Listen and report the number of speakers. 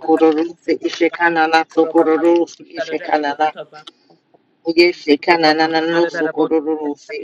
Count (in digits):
1